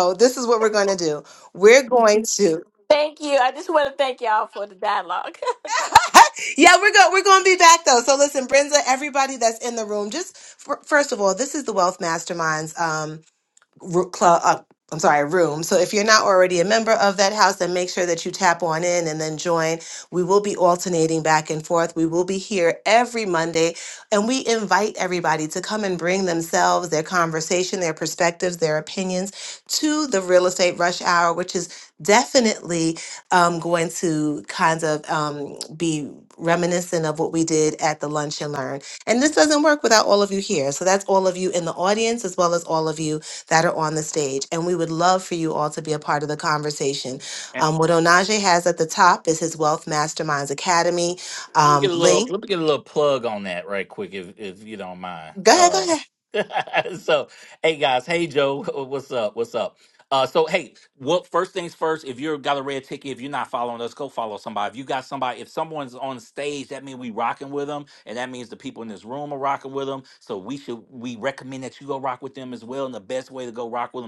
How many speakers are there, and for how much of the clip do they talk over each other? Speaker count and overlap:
3, about 2%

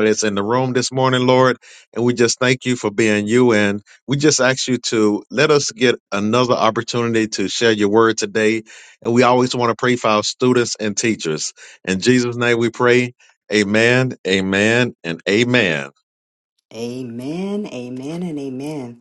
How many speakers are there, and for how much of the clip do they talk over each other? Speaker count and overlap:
2, no overlap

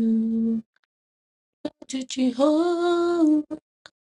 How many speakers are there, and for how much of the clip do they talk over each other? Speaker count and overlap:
1, no overlap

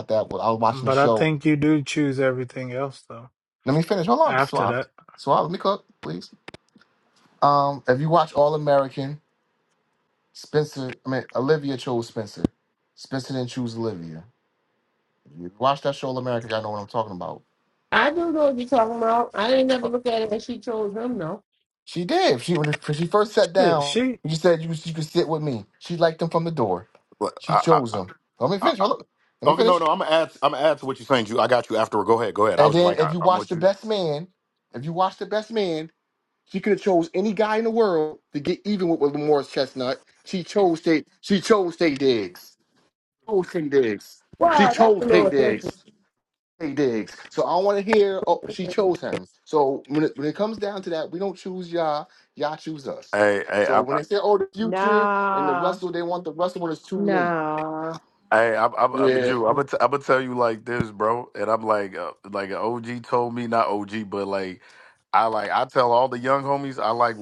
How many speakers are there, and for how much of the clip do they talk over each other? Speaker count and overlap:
5, about 11%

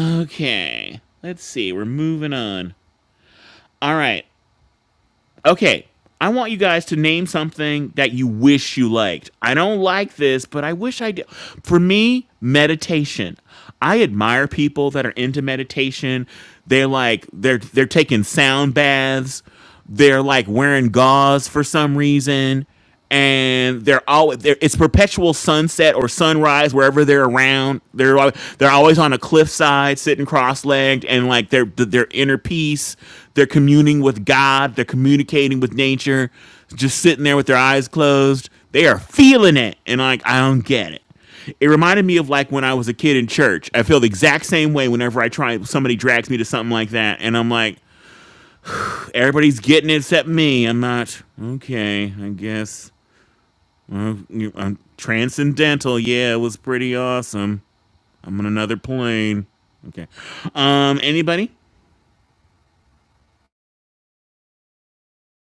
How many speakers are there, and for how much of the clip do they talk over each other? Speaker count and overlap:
1, no overlap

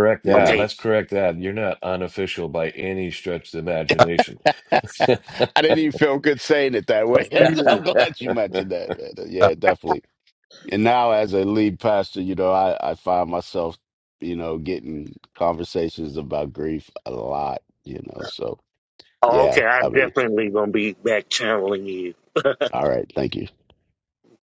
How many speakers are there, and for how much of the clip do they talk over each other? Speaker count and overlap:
3, about 6%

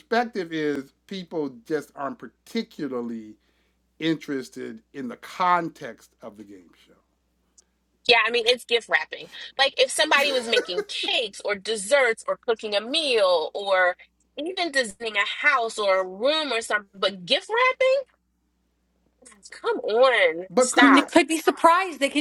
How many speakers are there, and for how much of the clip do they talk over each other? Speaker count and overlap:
3, about 3%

